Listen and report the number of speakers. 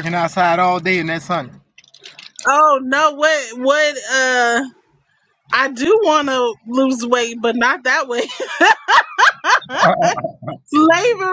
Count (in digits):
2